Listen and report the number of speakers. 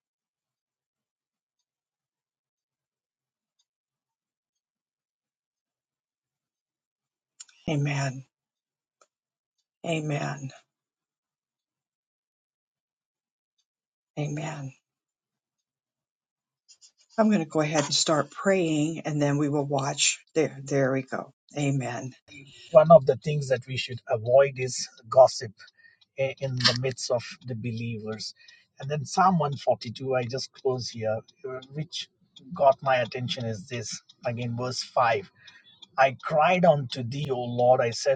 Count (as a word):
two